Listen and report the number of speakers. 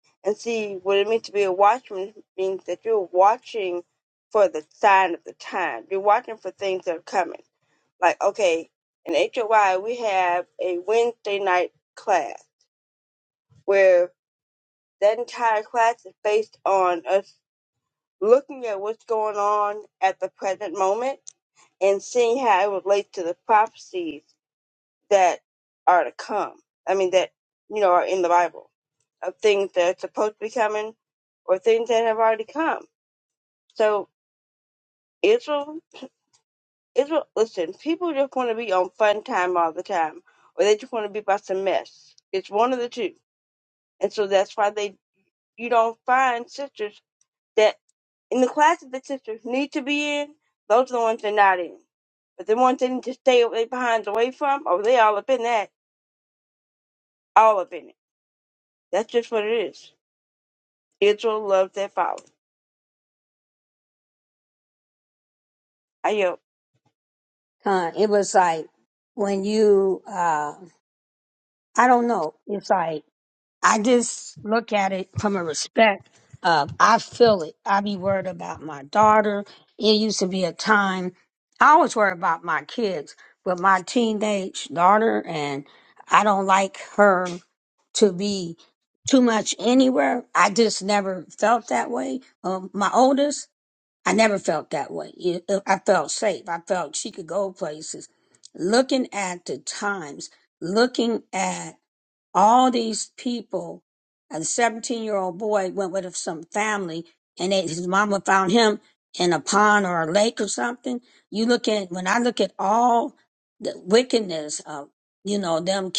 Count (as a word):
two